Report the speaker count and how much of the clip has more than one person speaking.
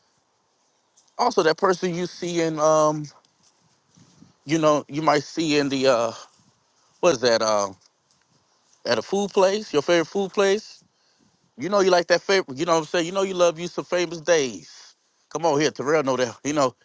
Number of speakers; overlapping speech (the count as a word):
one, no overlap